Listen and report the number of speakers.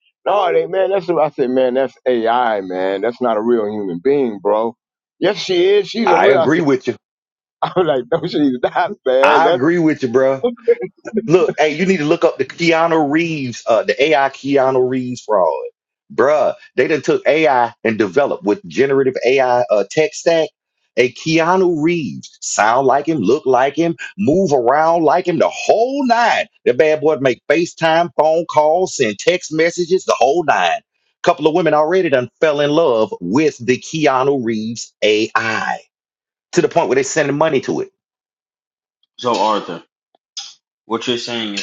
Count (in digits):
3